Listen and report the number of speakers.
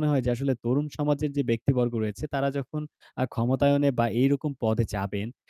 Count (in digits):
1